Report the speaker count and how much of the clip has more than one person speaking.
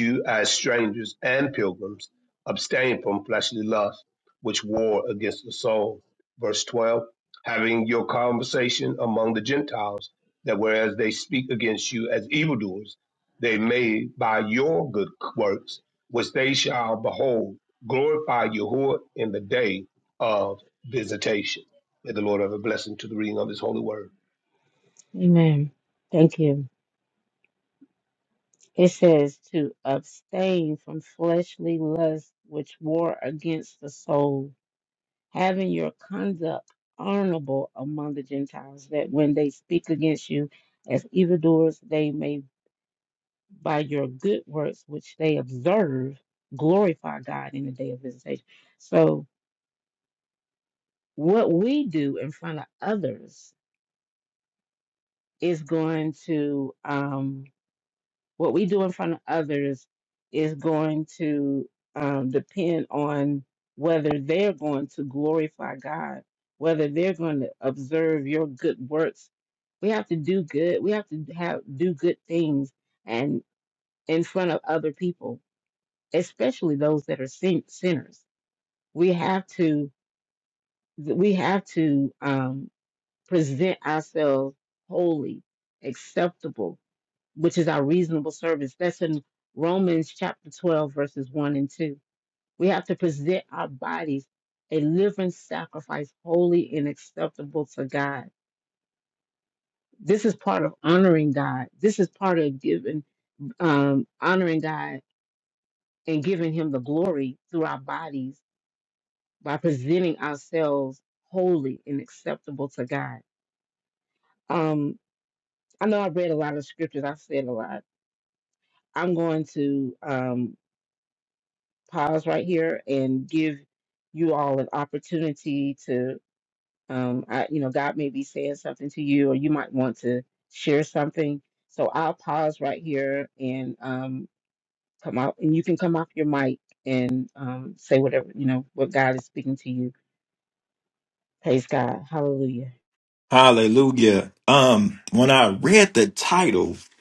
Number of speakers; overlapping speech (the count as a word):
three, no overlap